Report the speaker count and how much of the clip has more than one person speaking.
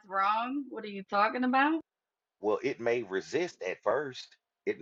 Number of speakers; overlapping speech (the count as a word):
two, no overlap